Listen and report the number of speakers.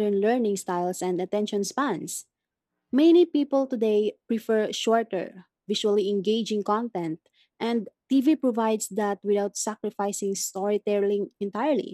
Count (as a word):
one